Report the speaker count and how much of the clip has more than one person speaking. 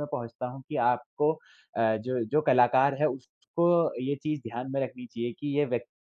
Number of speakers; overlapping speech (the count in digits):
1, no overlap